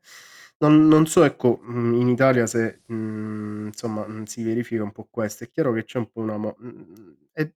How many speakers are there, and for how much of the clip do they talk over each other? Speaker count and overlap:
1, no overlap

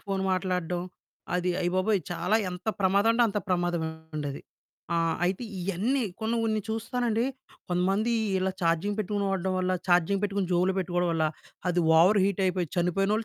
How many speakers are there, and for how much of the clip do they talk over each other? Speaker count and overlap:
1, no overlap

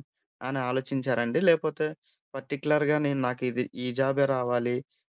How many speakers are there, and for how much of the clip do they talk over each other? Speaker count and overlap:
1, no overlap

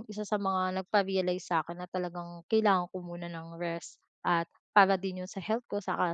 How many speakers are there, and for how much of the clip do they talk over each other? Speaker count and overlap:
1, no overlap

